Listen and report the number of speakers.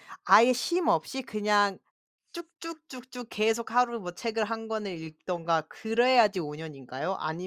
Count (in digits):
1